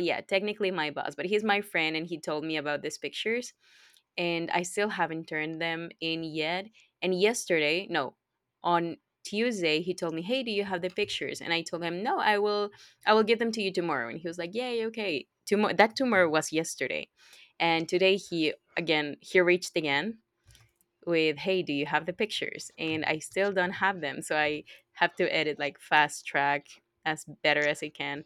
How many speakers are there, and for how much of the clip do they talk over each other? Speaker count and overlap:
1, no overlap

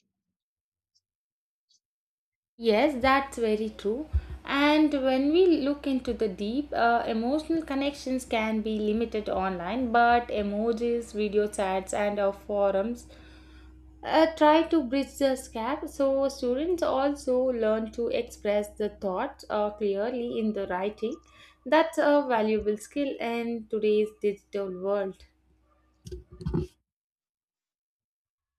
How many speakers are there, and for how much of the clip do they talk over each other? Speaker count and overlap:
1, no overlap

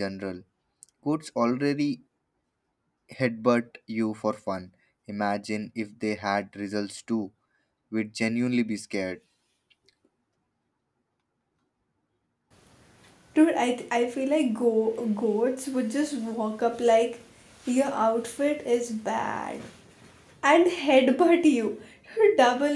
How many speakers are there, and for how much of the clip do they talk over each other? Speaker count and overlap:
2, no overlap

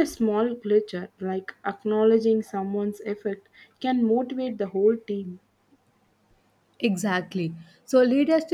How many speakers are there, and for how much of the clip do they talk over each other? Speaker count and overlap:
2, no overlap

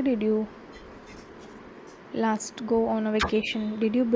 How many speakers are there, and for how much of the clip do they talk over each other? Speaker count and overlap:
1, no overlap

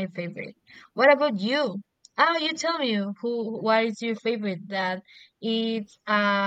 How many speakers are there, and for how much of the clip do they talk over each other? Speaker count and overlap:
1, no overlap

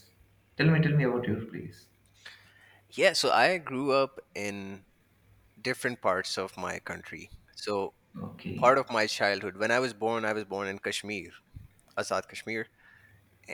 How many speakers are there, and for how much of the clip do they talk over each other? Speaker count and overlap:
2, about 1%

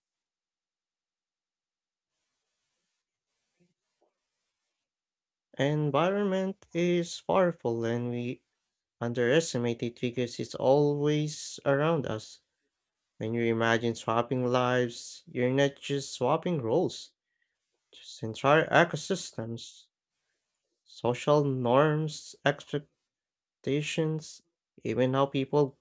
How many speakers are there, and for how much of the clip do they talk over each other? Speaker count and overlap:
1, no overlap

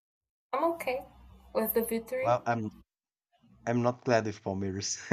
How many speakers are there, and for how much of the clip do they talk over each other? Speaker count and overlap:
2, about 3%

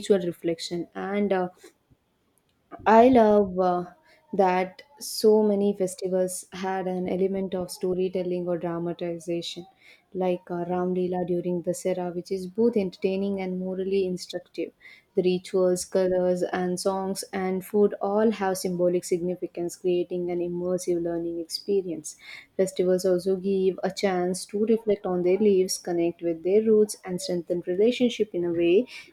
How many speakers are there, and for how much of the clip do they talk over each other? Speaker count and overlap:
1, no overlap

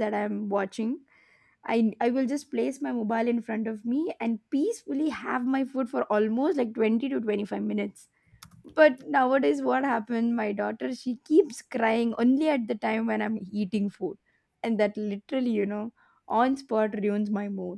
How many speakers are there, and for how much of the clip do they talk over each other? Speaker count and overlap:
1, no overlap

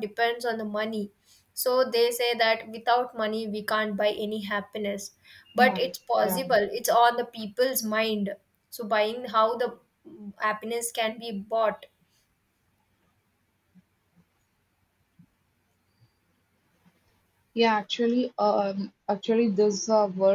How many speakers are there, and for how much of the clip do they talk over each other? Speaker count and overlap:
2, about 3%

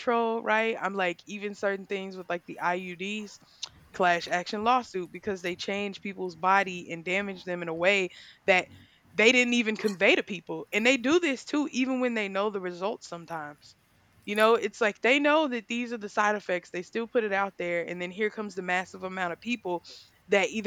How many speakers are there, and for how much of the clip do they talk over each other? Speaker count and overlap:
1, no overlap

